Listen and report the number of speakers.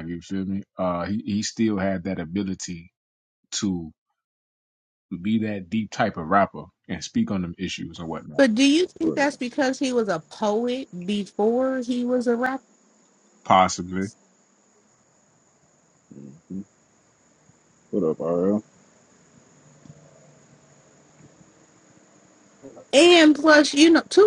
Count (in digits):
3